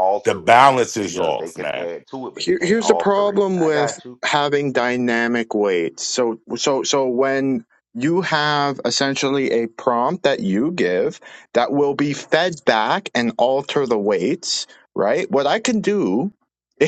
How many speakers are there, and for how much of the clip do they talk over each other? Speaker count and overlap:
3, about 17%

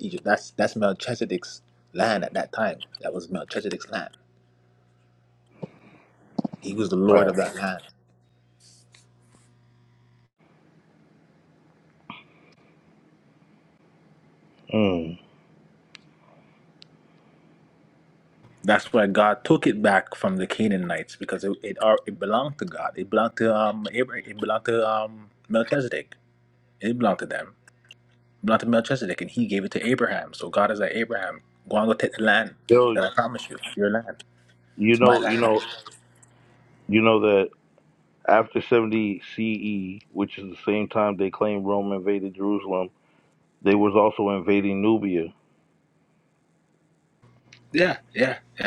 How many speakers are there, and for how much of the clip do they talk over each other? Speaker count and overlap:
2, about 2%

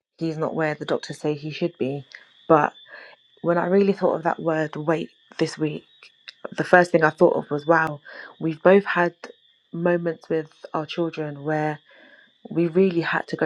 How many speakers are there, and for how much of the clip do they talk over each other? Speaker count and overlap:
1, no overlap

